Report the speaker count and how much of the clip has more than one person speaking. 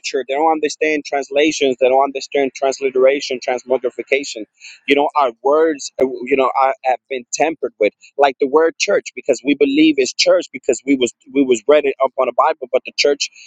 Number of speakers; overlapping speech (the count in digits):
1, no overlap